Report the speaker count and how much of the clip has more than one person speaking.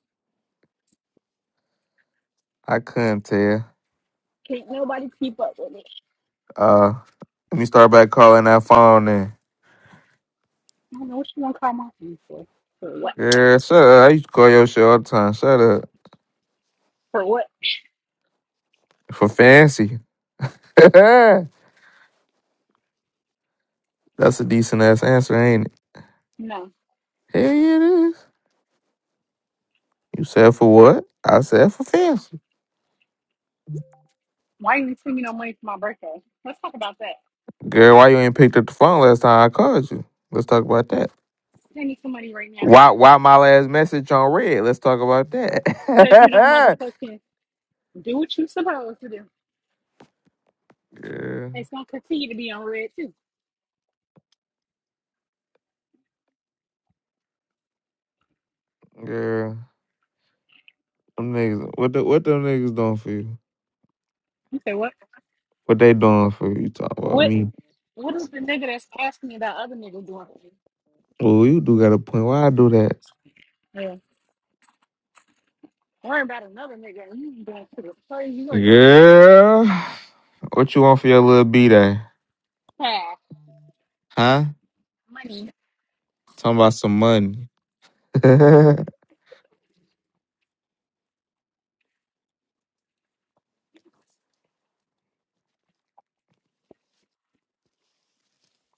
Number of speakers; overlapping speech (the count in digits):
2, under 1%